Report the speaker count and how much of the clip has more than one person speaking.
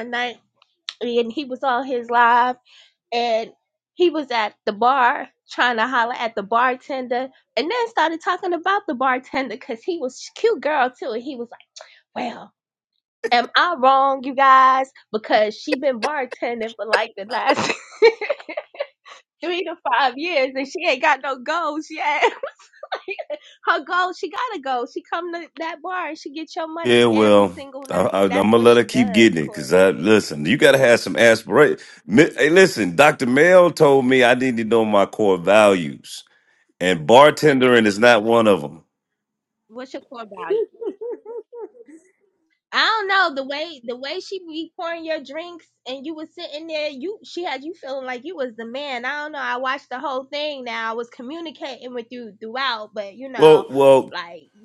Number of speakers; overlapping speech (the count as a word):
two, about 5%